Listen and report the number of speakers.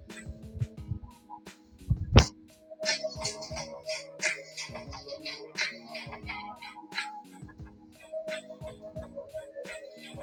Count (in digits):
0